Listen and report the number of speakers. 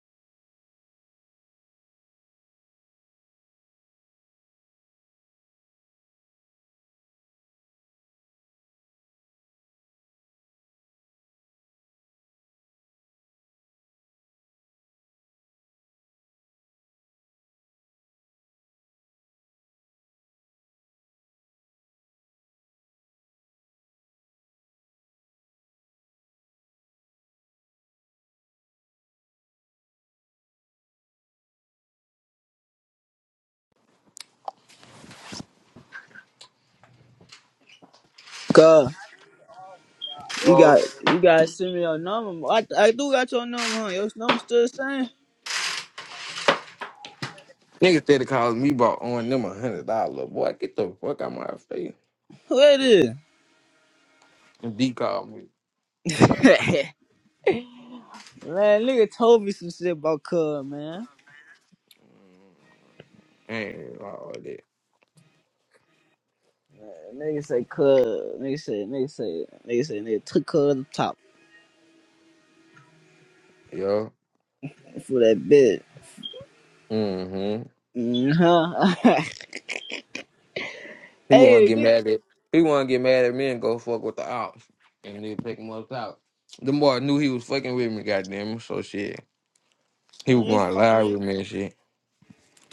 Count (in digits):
2